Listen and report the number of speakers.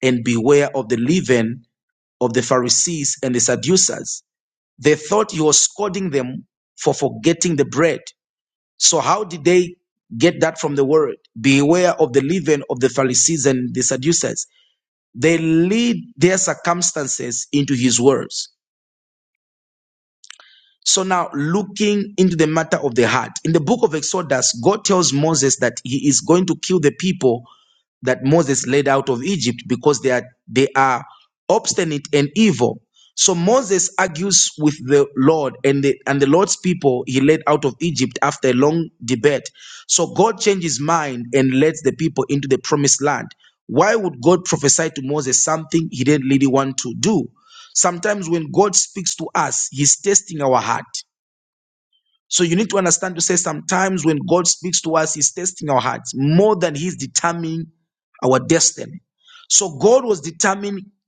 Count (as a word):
one